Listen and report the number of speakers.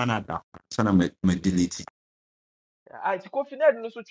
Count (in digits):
2